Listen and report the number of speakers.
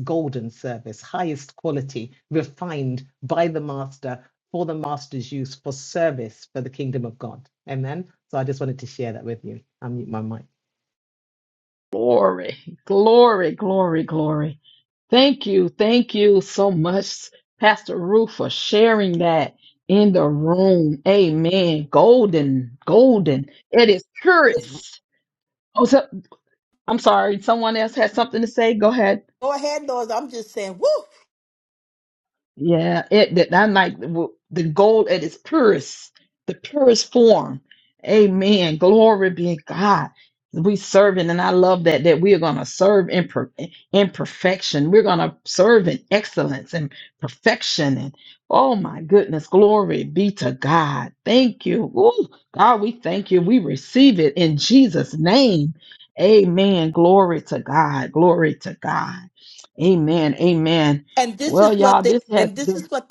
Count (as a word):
three